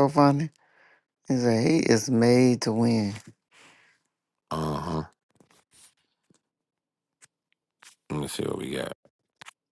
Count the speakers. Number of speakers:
2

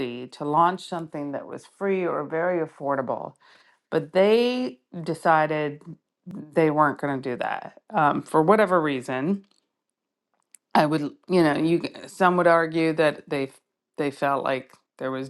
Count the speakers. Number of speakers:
1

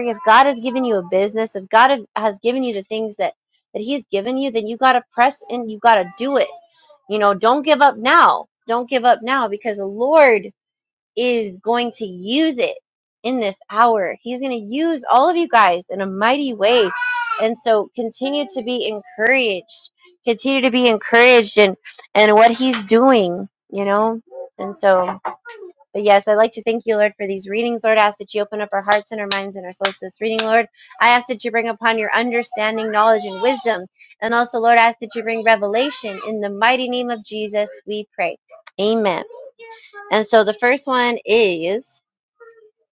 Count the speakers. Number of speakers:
1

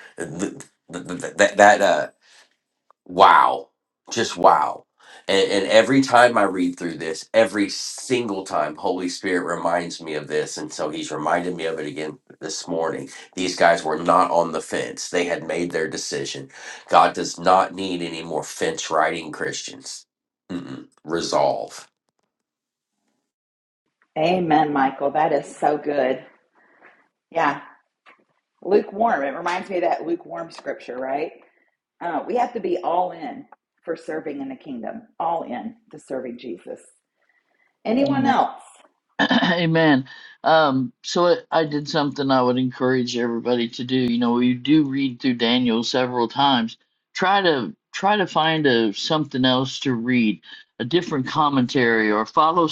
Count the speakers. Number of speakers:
3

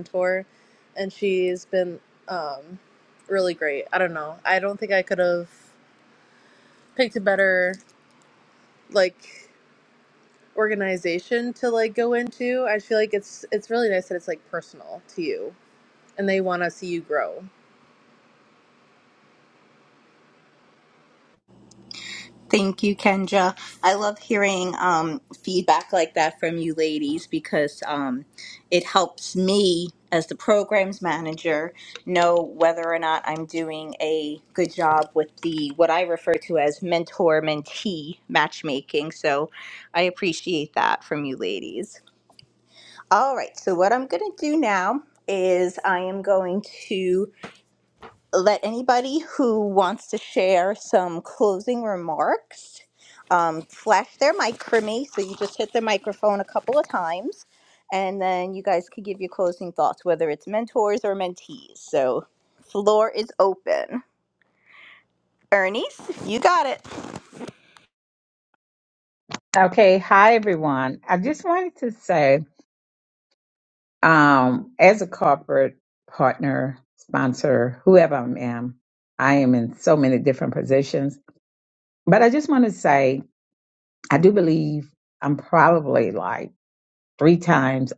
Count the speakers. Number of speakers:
3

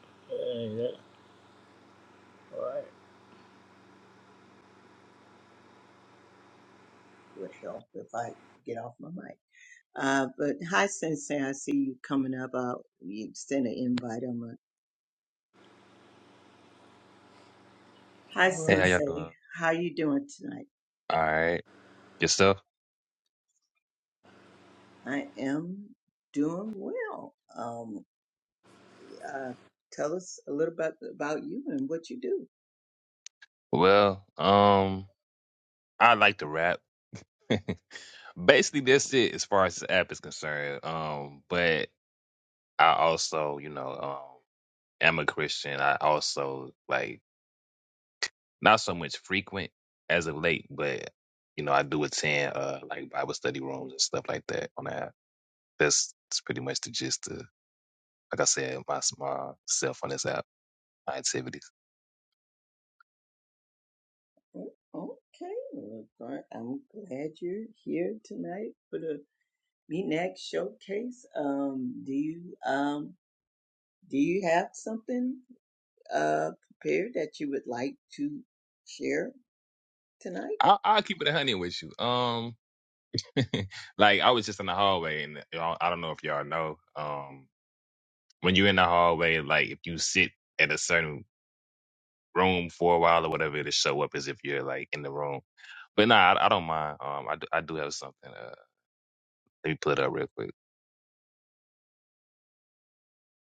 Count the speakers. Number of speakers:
3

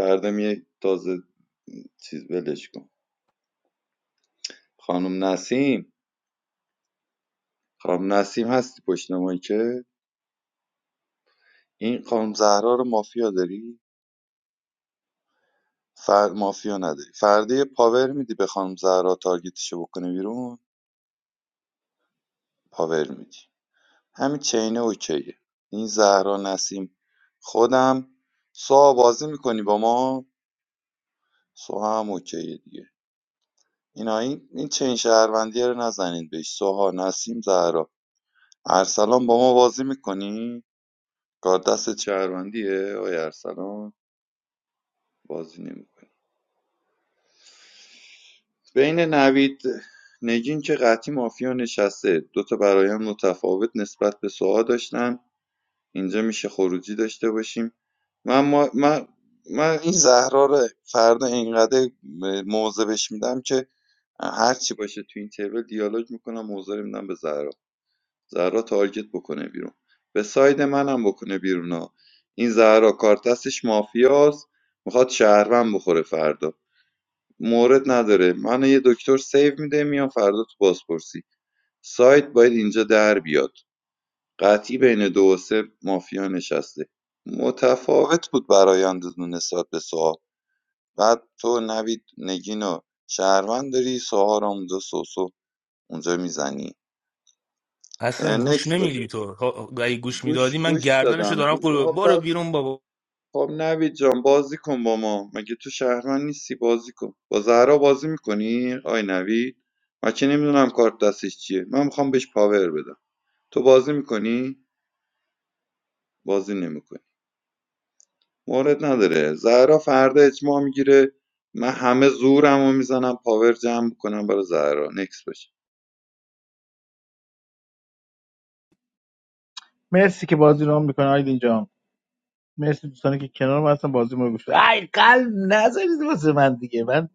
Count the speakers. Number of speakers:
3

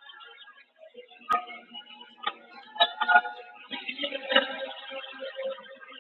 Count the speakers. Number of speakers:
0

